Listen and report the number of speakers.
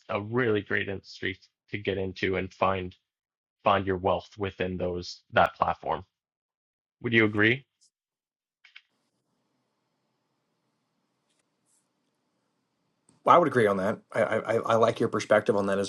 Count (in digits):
2